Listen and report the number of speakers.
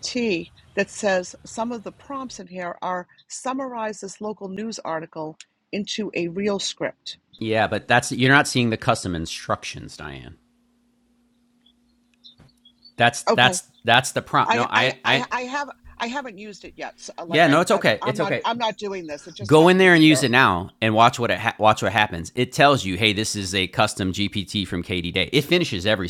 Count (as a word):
two